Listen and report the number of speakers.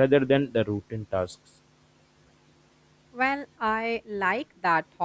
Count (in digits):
2